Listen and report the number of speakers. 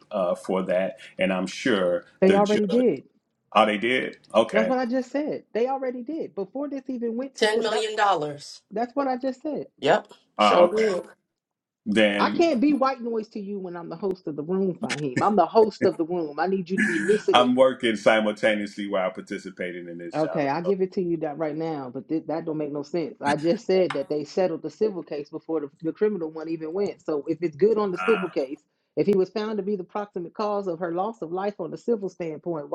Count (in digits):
3